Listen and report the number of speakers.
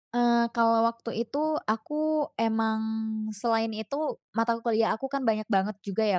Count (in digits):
1